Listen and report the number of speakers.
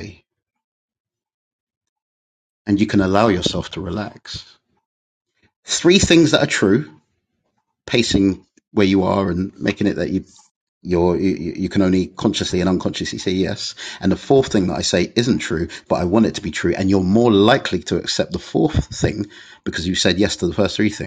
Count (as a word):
one